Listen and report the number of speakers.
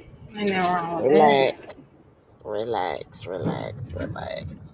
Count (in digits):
2